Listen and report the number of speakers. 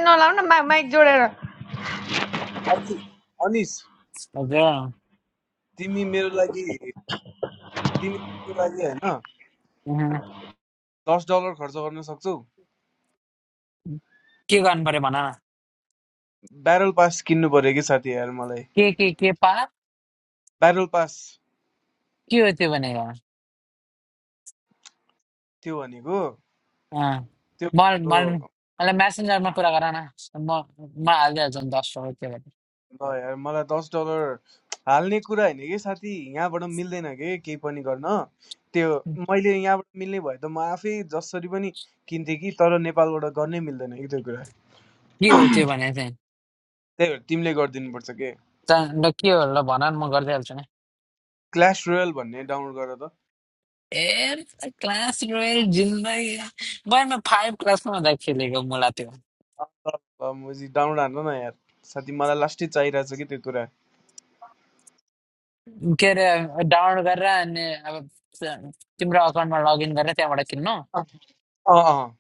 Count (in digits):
3